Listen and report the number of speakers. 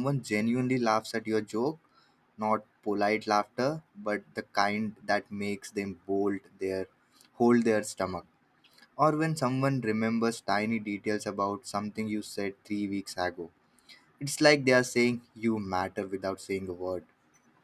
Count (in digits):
1